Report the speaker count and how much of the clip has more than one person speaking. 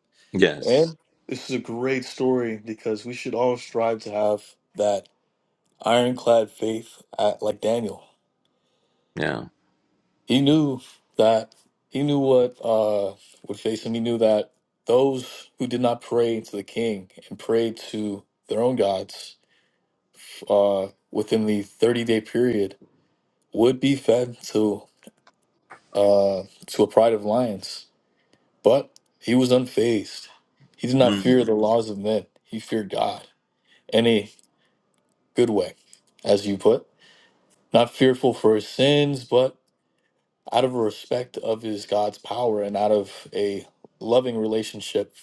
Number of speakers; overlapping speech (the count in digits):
2, about 2%